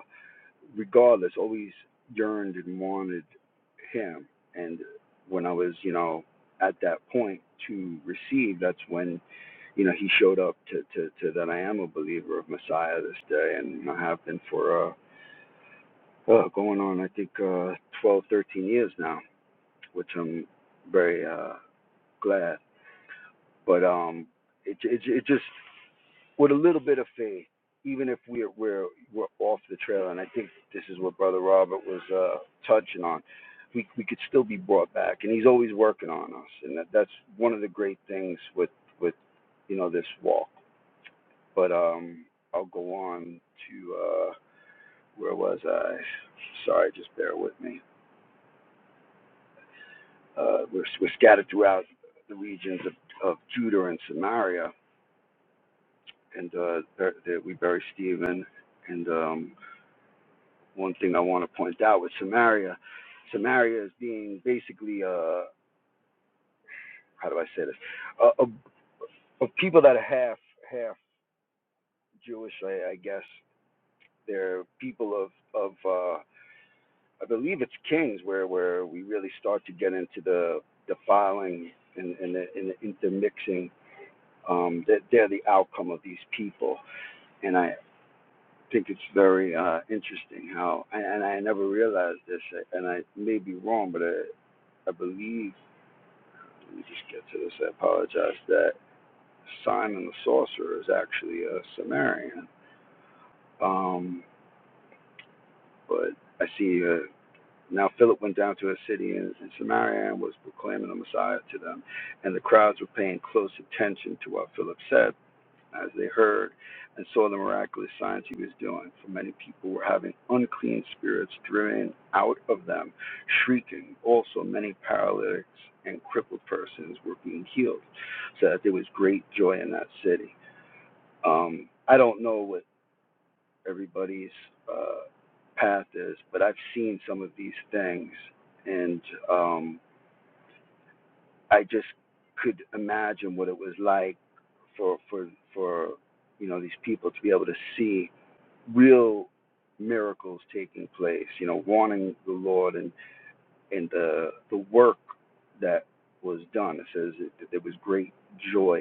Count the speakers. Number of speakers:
1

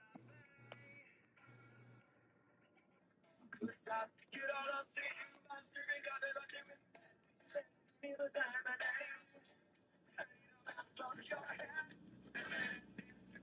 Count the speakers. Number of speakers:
0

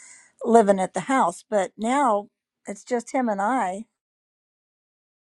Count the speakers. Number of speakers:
1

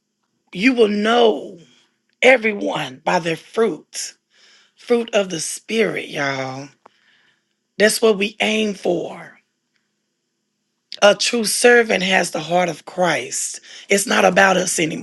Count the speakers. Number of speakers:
1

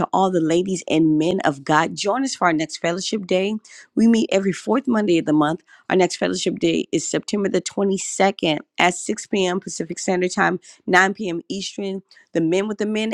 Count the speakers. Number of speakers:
1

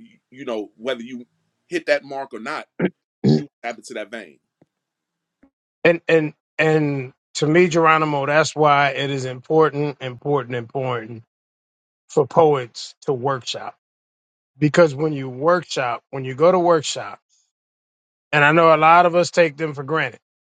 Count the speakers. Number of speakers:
2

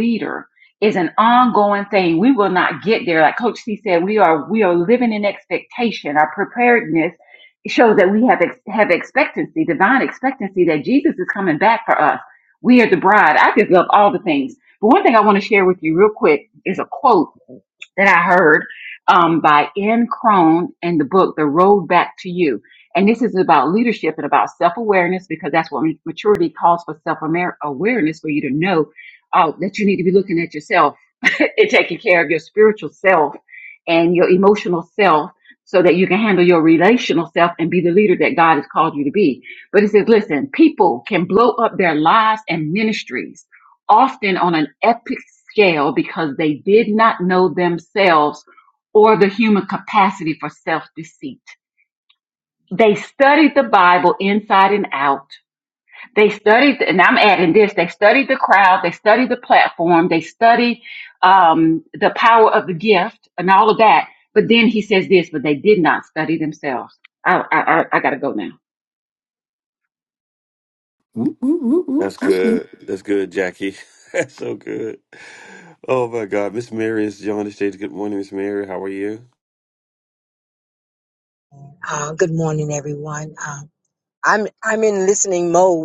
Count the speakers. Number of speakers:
4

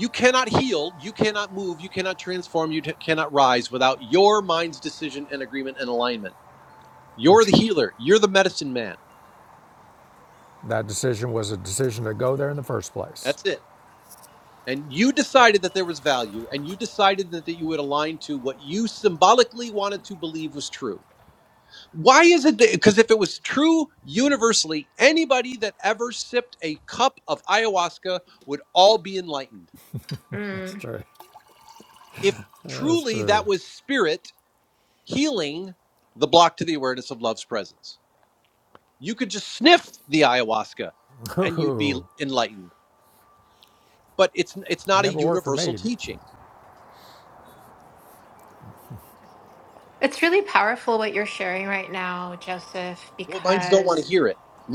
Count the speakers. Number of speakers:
3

